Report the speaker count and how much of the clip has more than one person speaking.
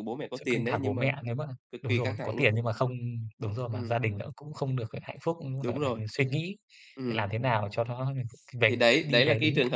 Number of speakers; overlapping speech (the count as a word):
two, about 33%